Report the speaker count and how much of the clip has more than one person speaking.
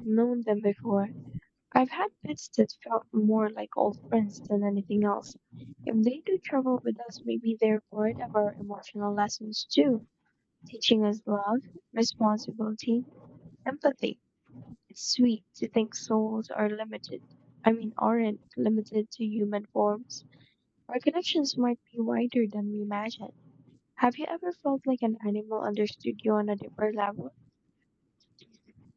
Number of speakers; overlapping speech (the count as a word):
one, no overlap